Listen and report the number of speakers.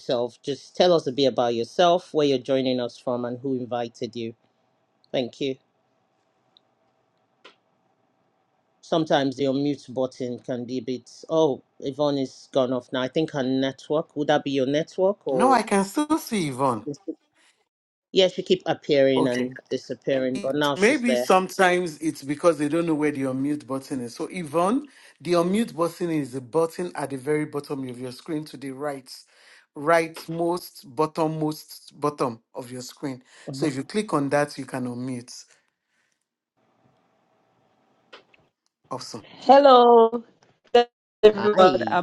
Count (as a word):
three